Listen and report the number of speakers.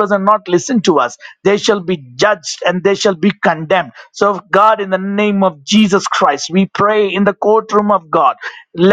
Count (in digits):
1